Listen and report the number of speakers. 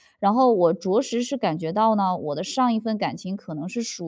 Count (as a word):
one